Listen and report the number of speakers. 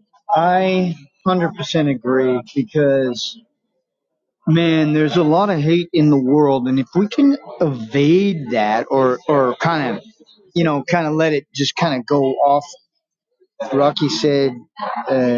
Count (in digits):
1